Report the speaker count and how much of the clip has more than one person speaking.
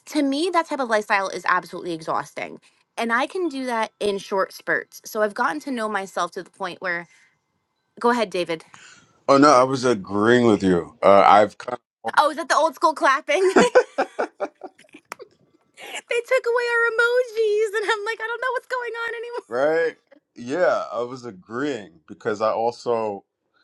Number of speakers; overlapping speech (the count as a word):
two, no overlap